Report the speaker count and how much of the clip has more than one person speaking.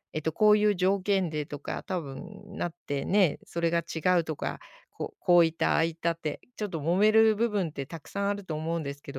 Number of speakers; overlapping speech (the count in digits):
1, no overlap